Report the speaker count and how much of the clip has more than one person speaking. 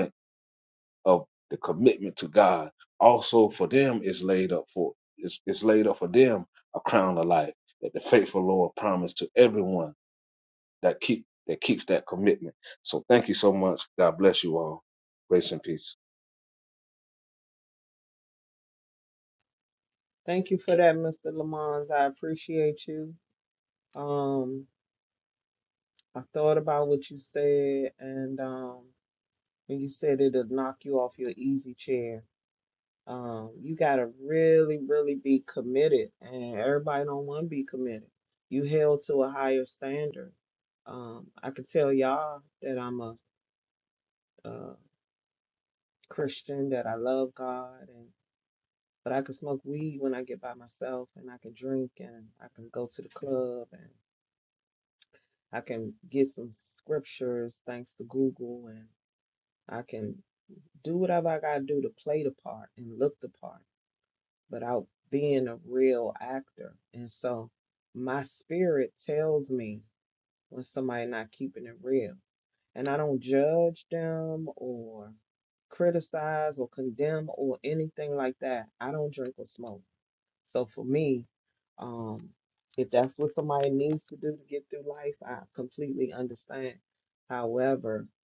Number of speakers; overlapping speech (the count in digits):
2, no overlap